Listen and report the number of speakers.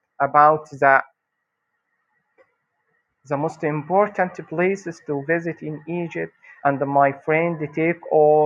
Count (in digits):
1